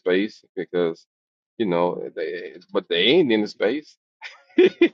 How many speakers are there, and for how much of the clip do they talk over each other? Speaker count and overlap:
1, no overlap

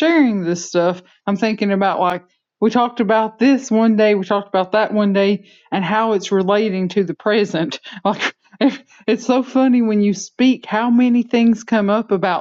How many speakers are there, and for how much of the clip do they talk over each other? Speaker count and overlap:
1, no overlap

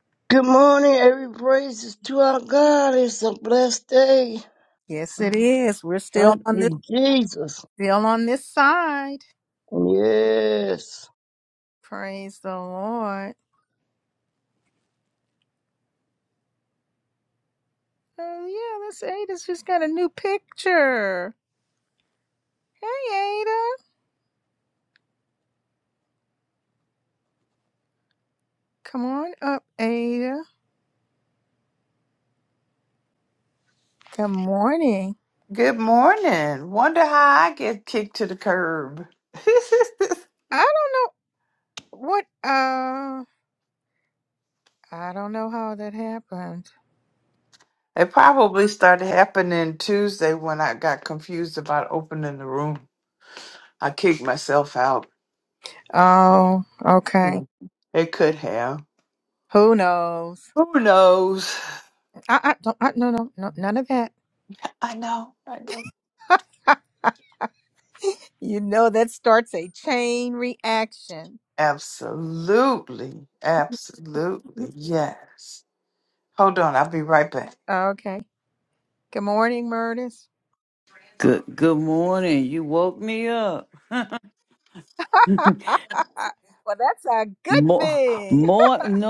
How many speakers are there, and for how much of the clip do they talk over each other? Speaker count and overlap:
4, about 2%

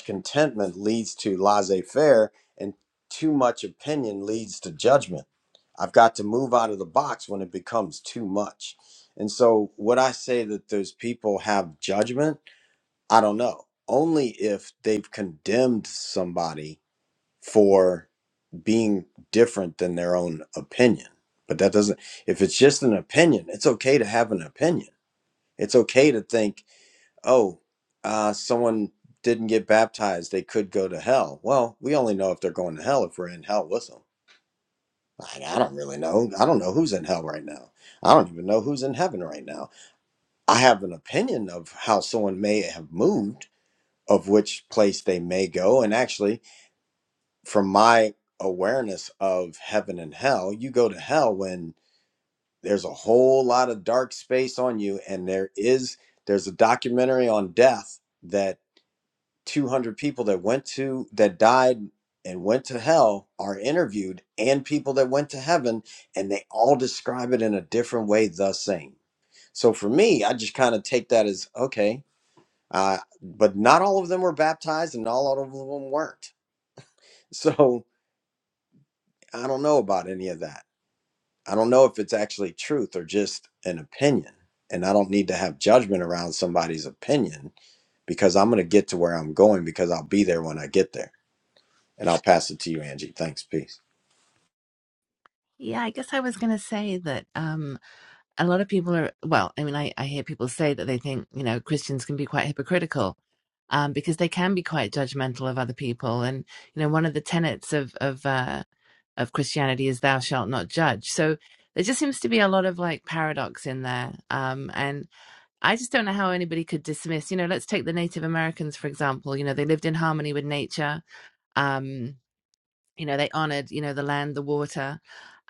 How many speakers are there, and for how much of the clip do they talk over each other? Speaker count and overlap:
2, no overlap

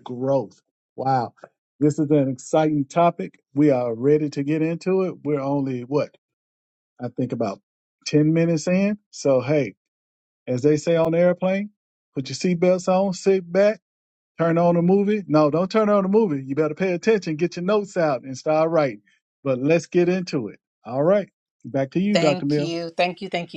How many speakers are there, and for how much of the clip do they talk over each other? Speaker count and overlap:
2, about 2%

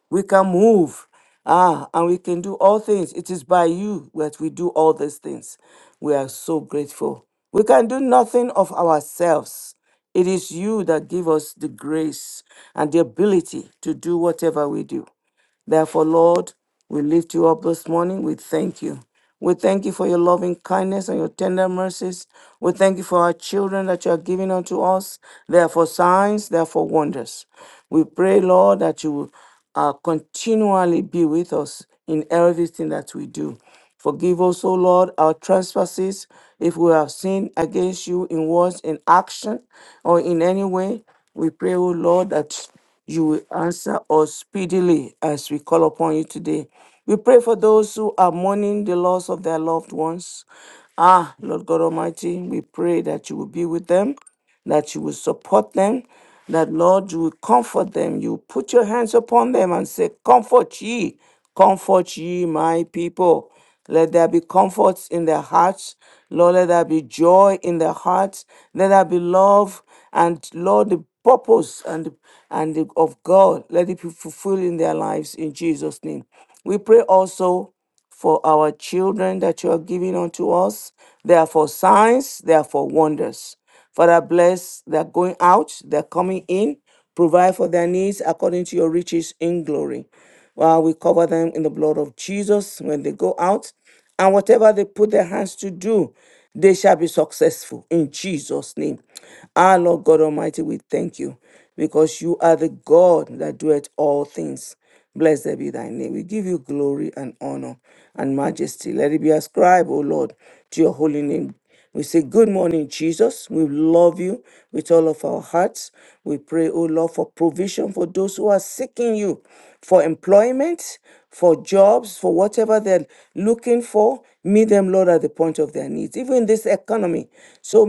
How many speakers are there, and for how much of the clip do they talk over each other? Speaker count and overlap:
1, no overlap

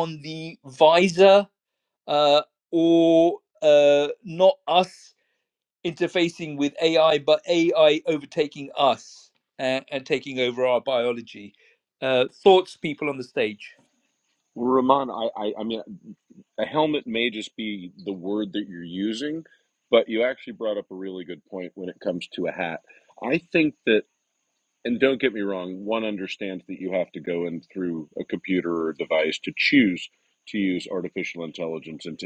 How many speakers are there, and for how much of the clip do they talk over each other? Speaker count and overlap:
2, no overlap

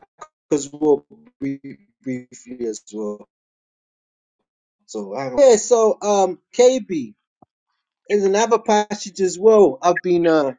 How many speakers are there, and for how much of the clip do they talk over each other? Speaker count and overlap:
1, no overlap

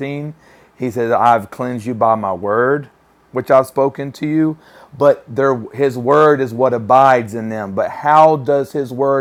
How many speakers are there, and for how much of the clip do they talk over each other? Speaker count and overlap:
1, no overlap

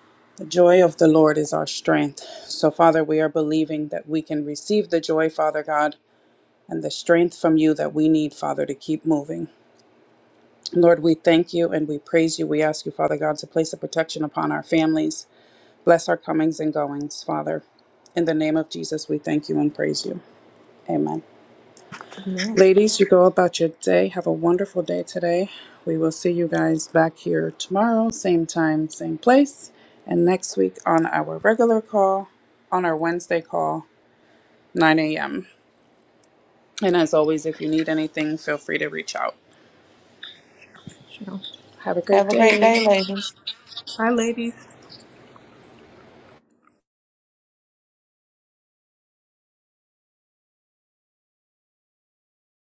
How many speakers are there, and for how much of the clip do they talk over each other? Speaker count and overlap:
3, about 2%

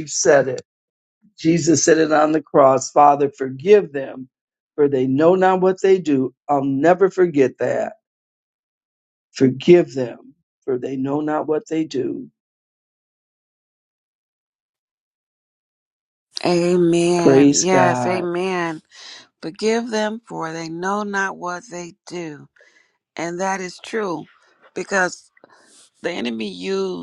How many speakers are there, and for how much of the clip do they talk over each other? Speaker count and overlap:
2, about 4%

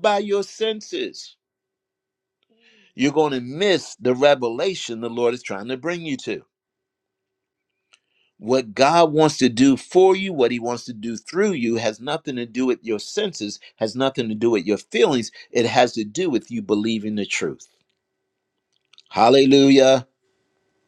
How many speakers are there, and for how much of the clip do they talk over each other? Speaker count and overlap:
1, no overlap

